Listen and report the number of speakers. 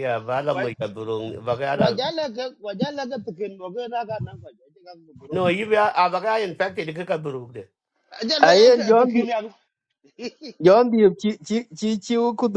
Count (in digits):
3